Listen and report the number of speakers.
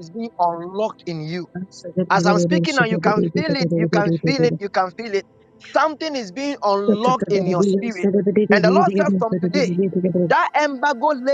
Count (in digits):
2